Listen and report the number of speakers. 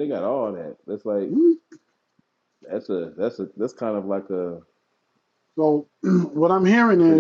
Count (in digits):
2